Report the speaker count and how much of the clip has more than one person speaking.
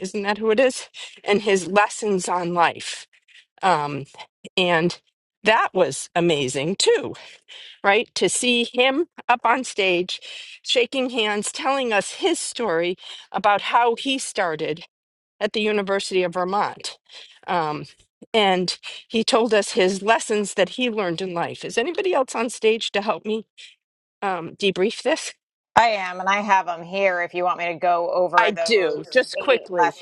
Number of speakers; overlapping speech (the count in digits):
2, about 5%